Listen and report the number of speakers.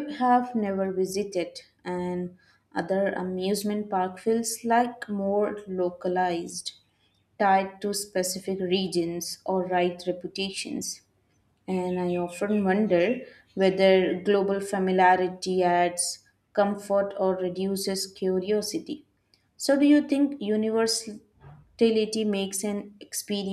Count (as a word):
one